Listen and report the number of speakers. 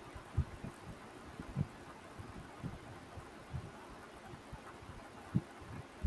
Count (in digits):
0